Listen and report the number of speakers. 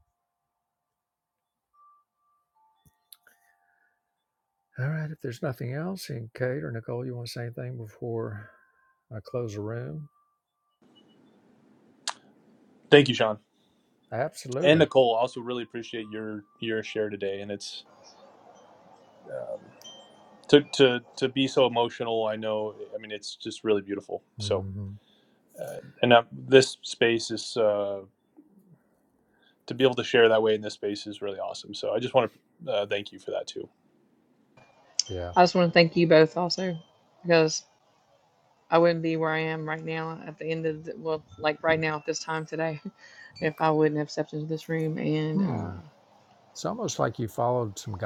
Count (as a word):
three